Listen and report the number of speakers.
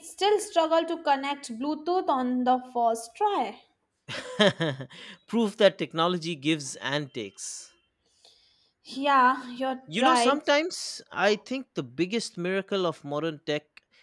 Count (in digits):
2